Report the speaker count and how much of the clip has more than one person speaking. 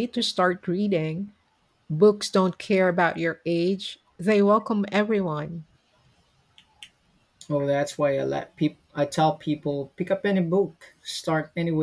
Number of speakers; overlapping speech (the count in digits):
2, no overlap